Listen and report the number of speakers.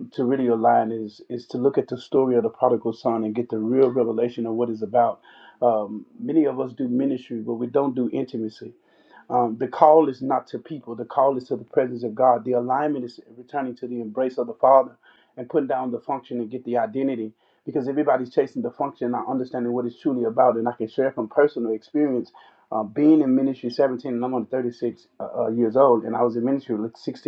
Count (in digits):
1